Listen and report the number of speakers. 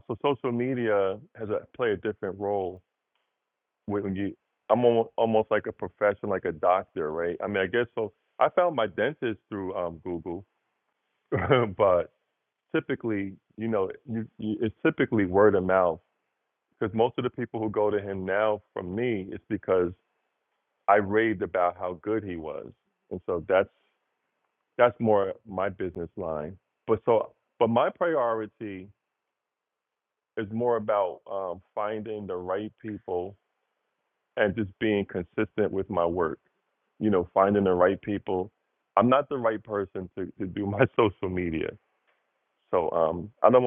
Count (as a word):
one